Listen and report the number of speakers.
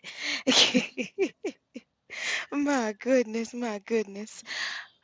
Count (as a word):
one